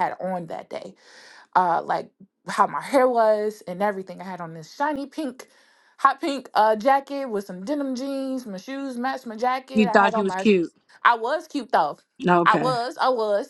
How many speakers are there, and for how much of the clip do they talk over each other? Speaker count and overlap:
two, about 8%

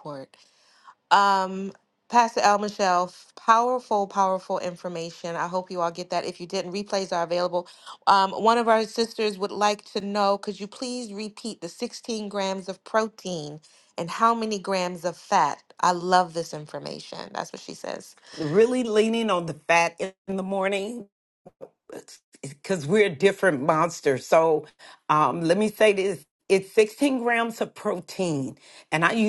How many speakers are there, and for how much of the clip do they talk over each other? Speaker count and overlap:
two, no overlap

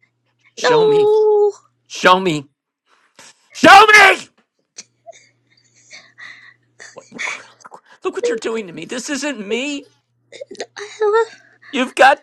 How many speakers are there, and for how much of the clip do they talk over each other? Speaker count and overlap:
two, about 4%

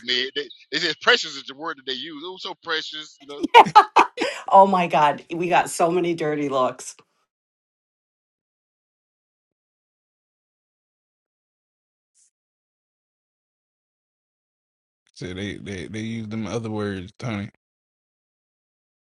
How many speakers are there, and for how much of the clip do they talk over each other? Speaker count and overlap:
three, no overlap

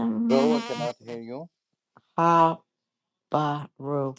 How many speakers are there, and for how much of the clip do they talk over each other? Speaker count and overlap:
two, no overlap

